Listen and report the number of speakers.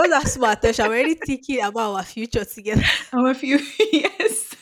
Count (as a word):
two